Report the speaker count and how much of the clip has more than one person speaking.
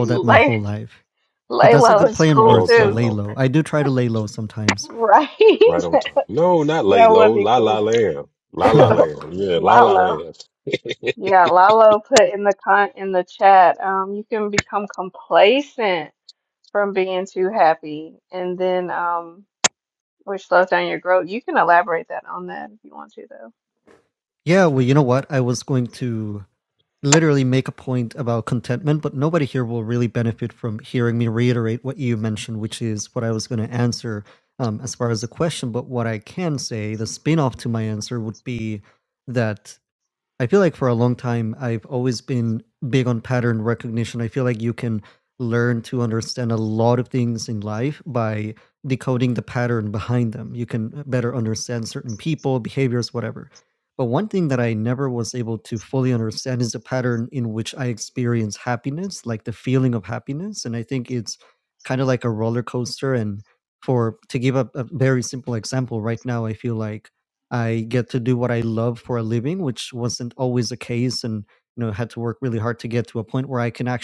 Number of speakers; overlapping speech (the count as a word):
three, about 5%